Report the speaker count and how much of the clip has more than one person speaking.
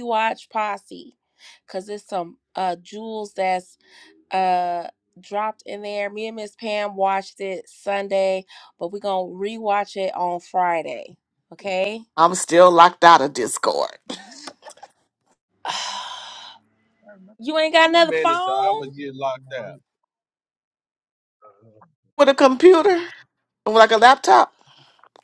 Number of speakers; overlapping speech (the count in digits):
3, about 5%